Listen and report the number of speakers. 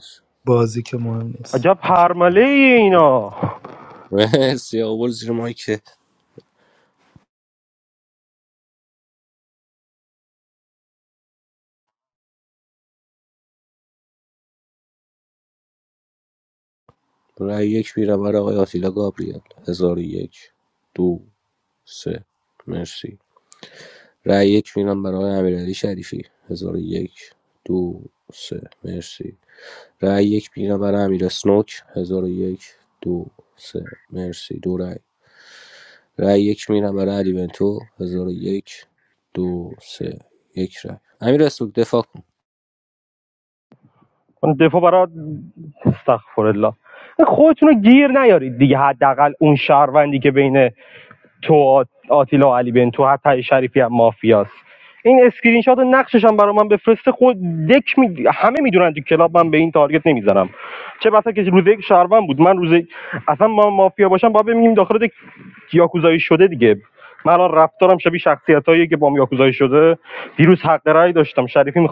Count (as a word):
three